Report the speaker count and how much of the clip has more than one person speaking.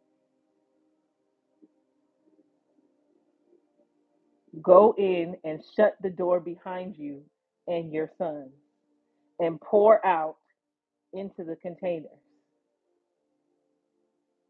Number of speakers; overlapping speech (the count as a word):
one, no overlap